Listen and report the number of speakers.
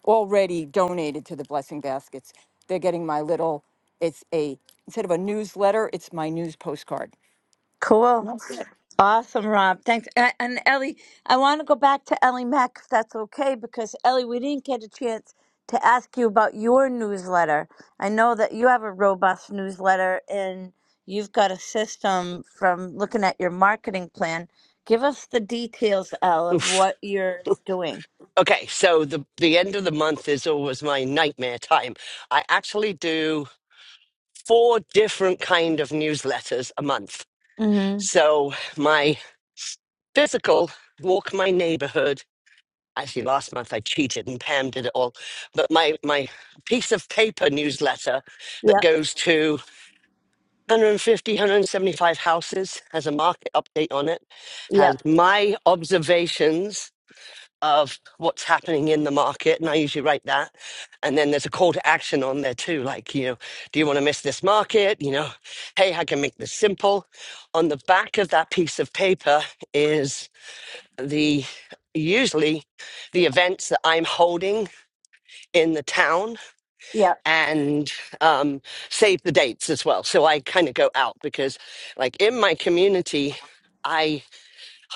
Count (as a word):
three